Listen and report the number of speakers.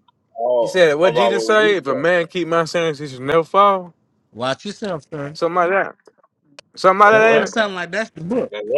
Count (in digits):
3